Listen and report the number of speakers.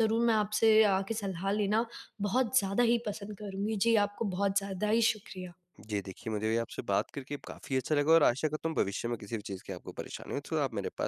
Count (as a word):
two